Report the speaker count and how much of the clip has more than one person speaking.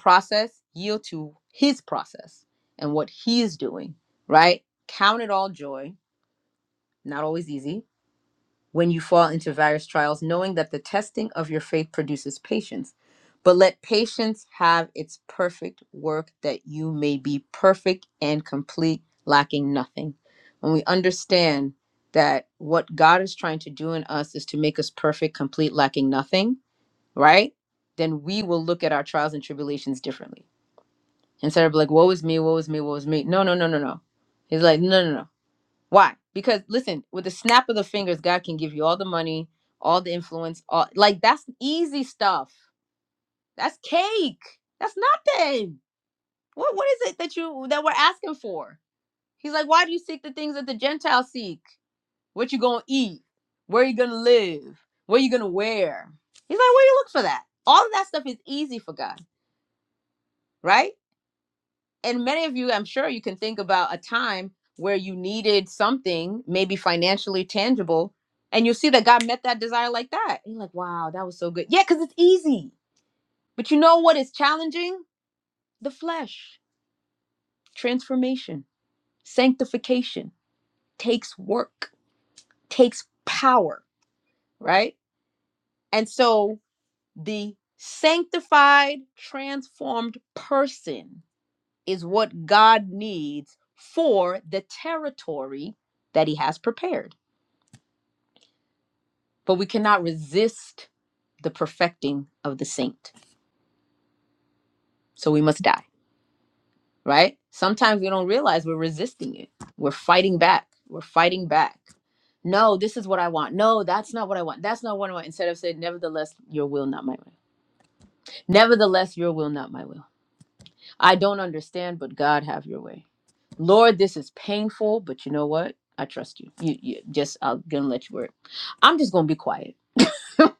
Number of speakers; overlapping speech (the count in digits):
1, no overlap